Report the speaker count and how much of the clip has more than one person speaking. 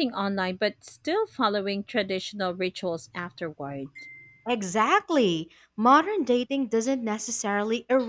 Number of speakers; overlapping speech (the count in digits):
2, no overlap